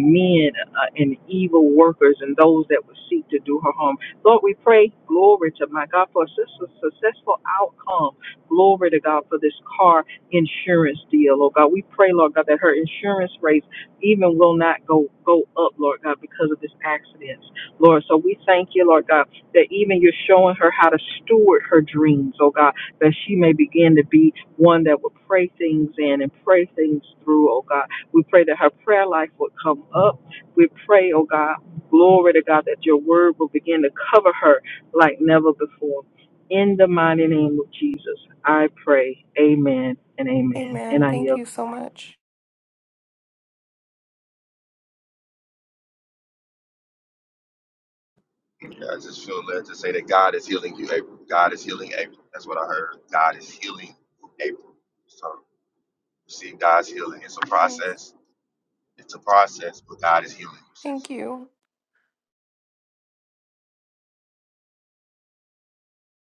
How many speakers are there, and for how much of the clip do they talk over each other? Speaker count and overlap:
three, about 2%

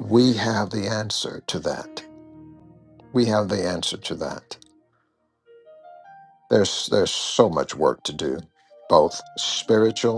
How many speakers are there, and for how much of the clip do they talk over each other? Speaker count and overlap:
one, no overlap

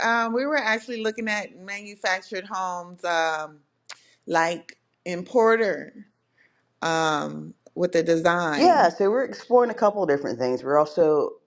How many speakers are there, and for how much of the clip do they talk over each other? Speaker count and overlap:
two, about 3%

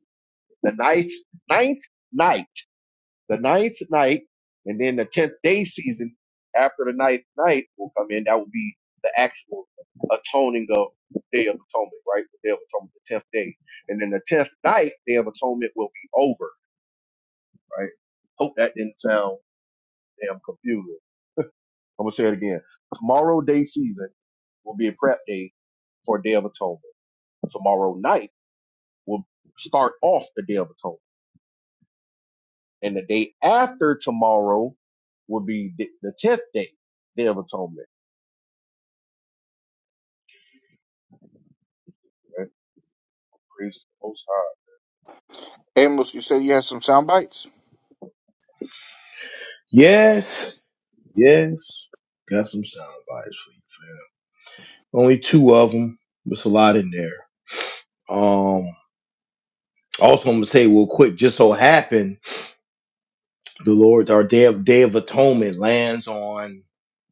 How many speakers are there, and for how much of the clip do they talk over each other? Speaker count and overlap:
three, no overlap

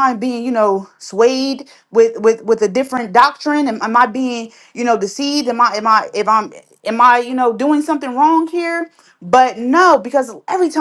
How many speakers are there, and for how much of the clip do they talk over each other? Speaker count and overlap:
one, no overlap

